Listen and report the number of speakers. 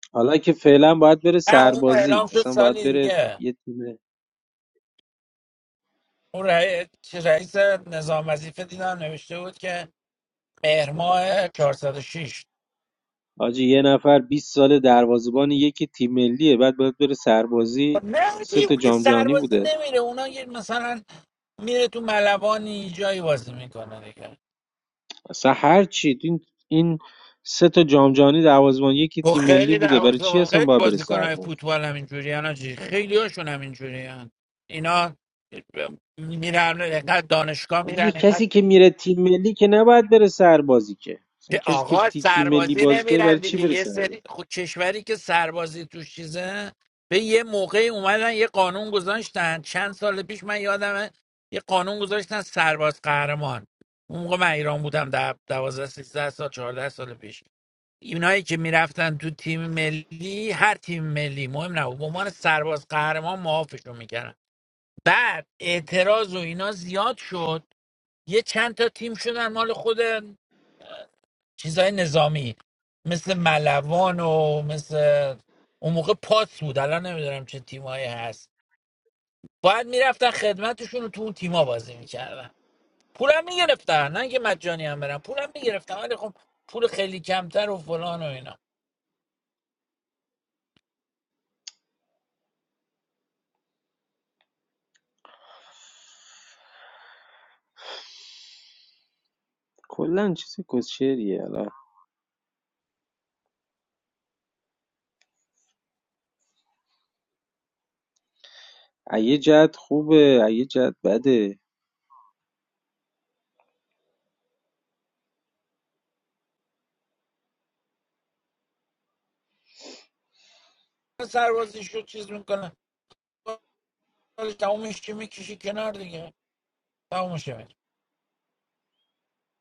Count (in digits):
2